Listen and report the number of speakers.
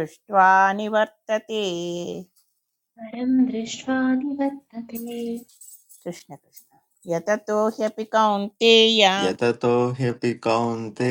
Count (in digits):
3